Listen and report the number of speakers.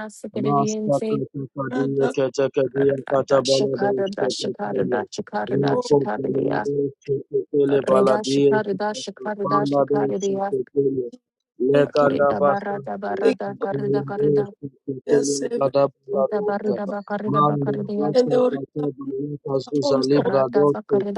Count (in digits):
3